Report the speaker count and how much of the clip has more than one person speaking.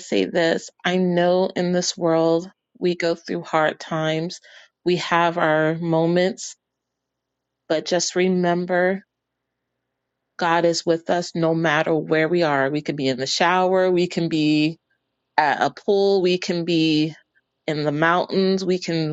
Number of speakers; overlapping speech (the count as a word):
one, no overlap